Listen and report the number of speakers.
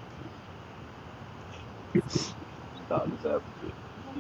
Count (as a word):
zero